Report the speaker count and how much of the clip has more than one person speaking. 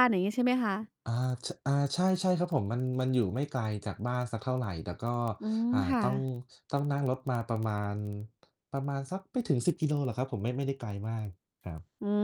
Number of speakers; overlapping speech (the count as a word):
two, about 4%